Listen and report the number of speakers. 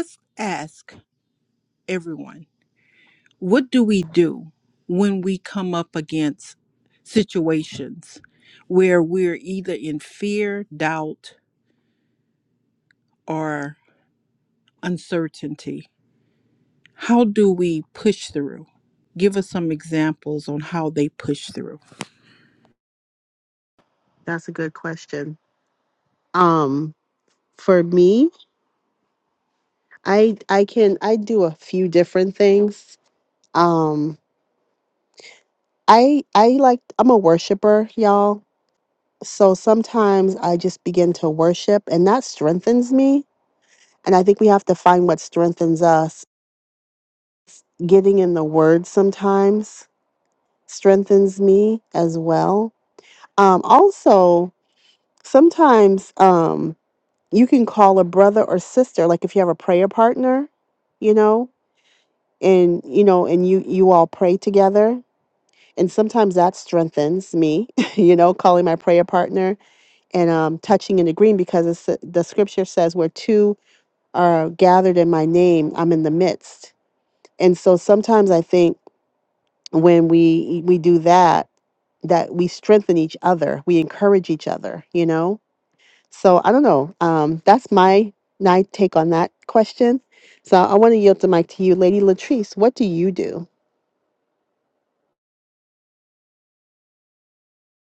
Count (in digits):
2